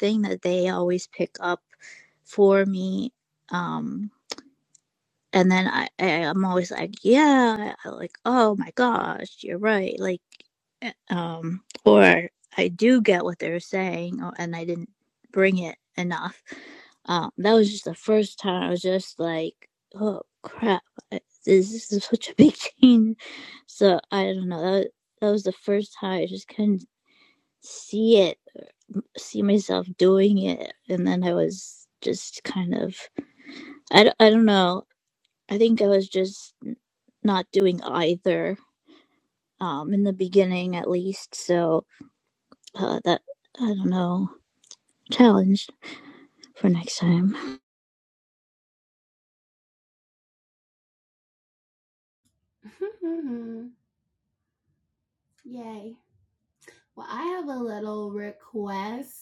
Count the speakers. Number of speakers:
2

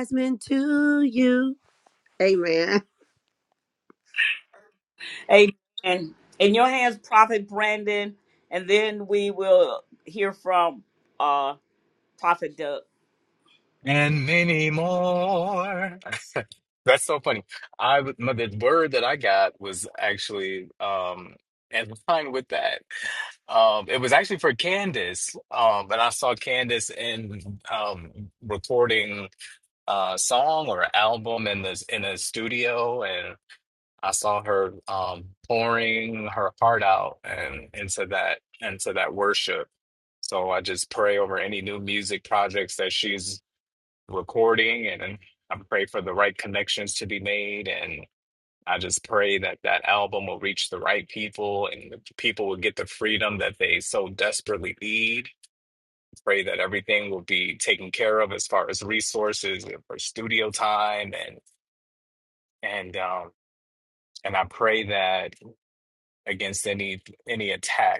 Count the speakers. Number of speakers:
3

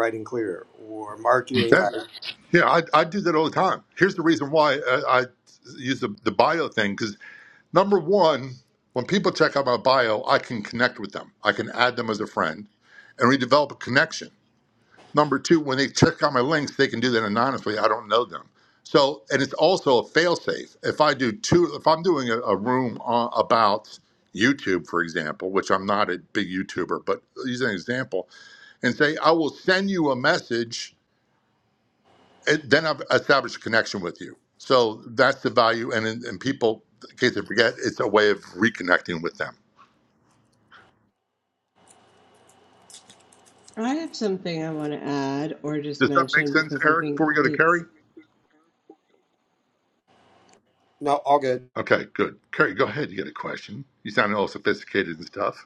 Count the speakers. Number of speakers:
3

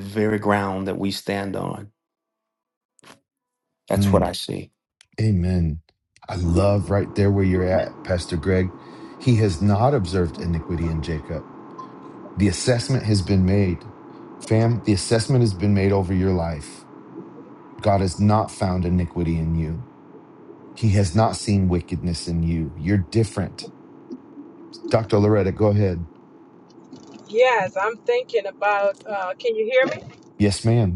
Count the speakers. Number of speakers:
3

